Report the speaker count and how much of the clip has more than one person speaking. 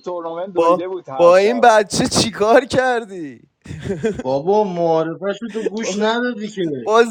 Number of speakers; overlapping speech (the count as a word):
three, about 13%